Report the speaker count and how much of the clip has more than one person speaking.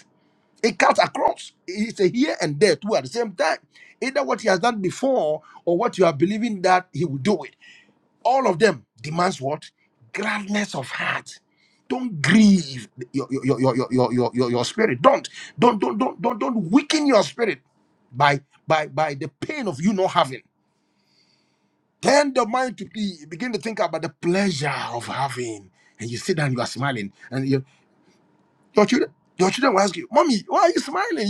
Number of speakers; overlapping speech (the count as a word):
one, no overlap